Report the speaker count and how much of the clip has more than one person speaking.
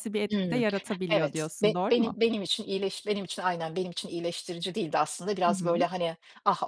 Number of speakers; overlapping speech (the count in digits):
2, about 27%